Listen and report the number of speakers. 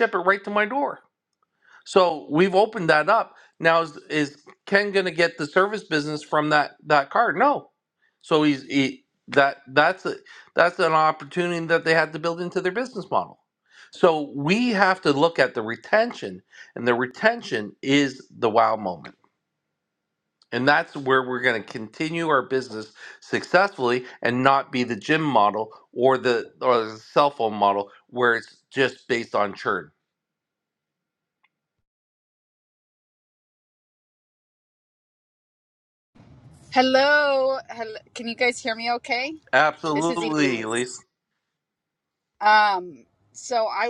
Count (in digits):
2